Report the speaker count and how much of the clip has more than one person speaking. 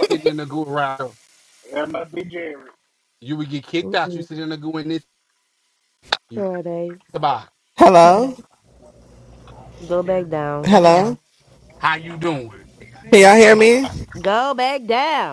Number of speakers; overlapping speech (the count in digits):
4, about 7%